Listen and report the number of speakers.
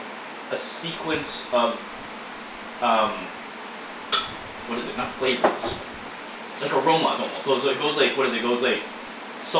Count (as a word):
one